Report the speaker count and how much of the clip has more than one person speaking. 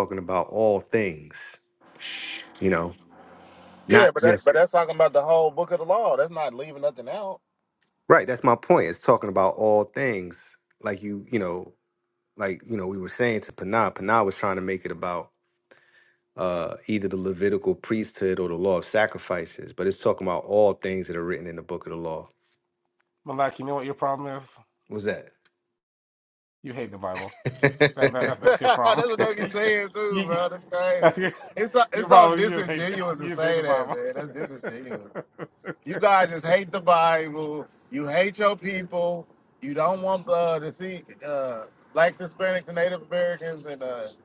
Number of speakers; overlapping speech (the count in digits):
3, about 8%